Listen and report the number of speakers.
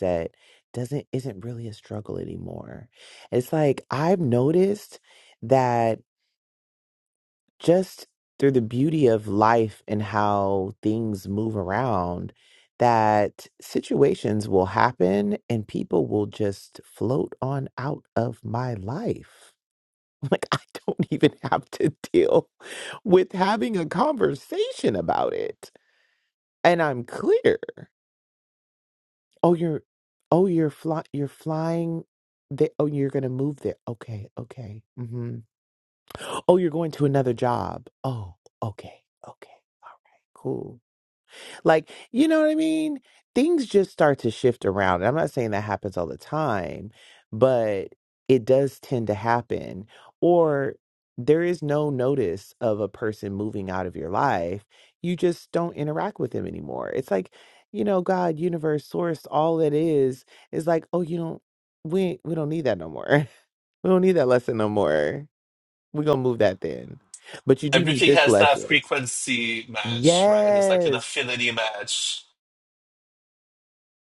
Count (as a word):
two